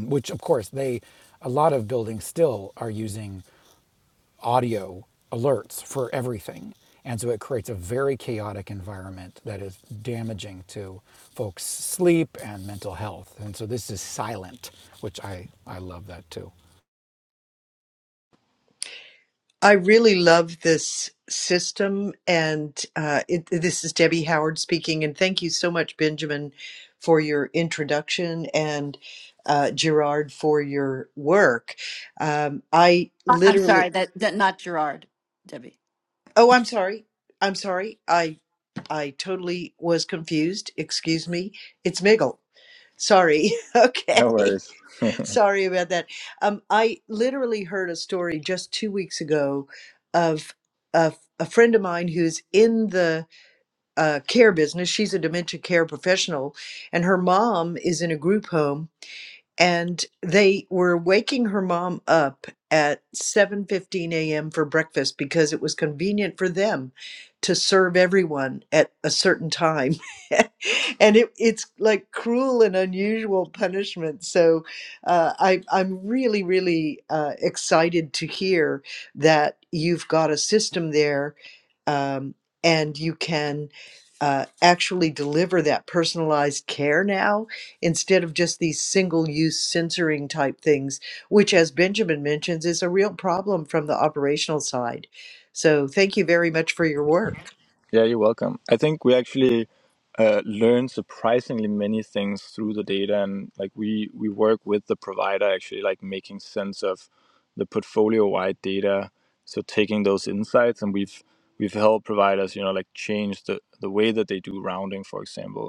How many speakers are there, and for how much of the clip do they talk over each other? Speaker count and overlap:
four, about 1%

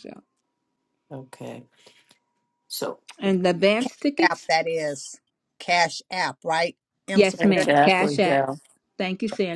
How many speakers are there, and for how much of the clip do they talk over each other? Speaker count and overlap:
three, about 19%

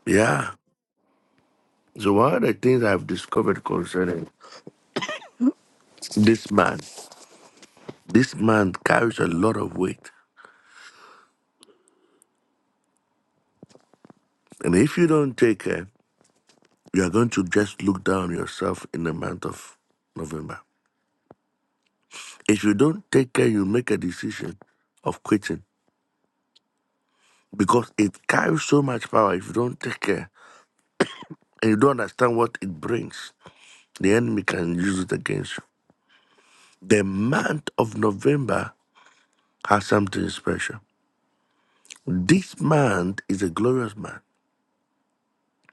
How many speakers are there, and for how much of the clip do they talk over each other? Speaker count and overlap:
one, no overlap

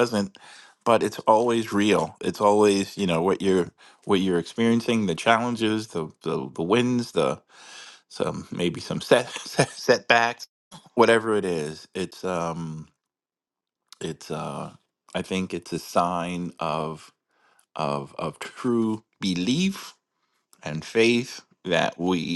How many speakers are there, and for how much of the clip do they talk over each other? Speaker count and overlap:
one, no overlap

